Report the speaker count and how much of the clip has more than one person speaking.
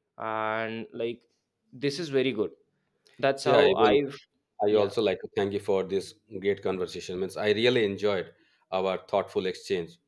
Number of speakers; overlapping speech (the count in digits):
2, about 8%